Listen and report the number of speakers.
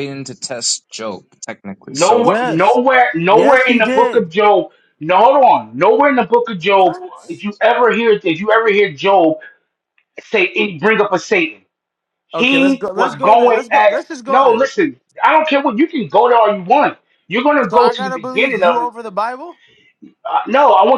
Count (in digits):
3